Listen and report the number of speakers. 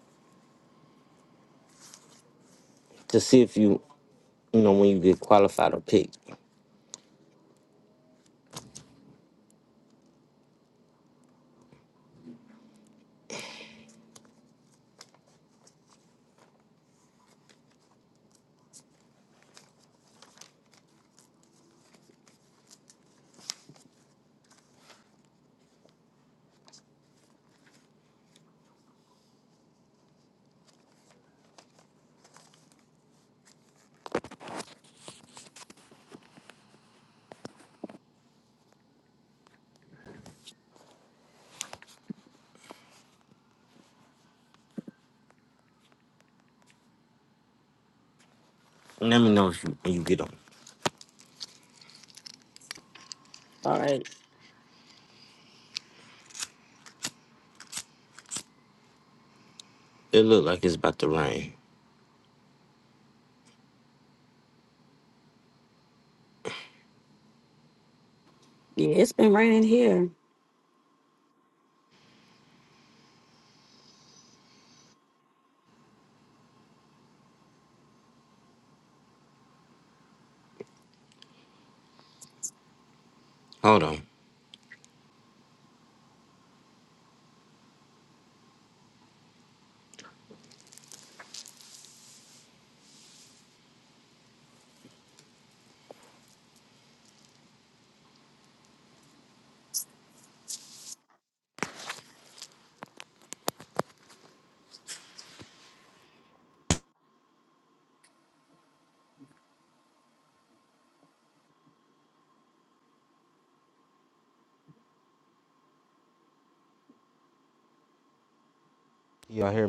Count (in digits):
2